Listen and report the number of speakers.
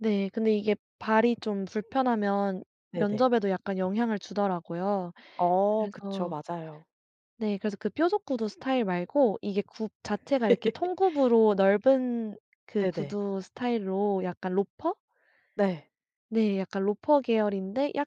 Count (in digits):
2